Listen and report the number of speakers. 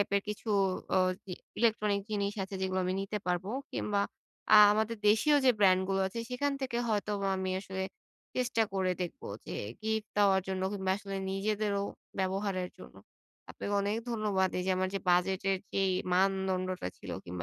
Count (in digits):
1